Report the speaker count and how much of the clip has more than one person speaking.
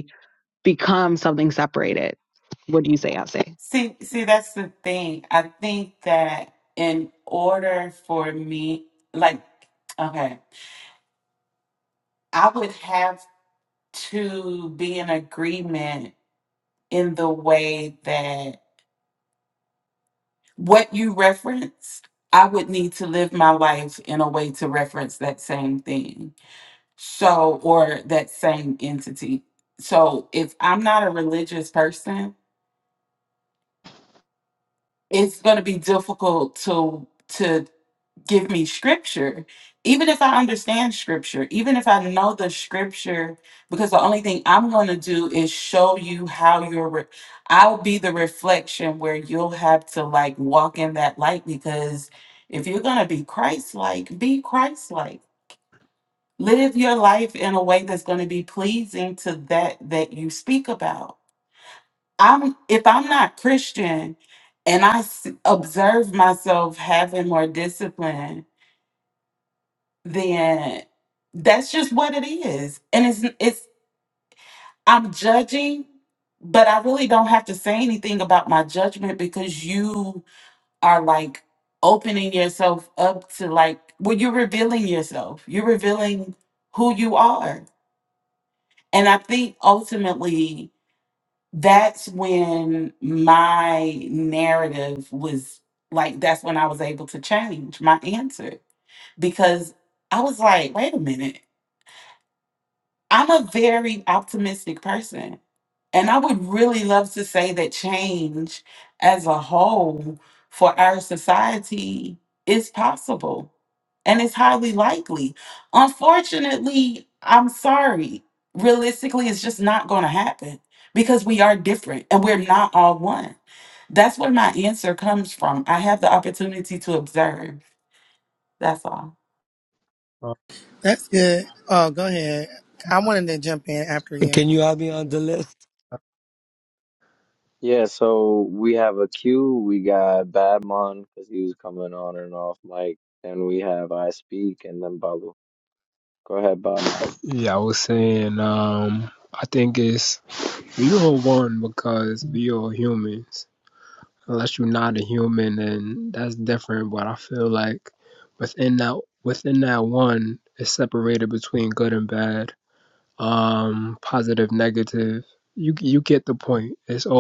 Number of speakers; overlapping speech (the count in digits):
6, under 1%